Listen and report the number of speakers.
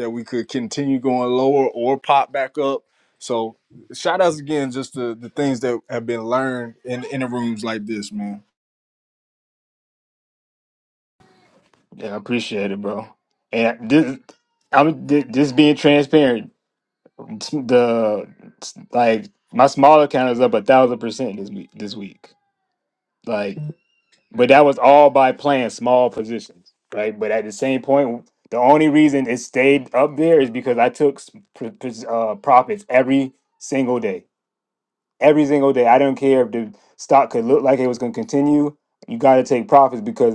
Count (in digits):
2